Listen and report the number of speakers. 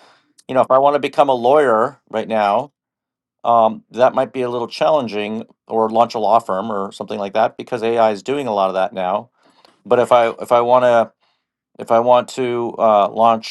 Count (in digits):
1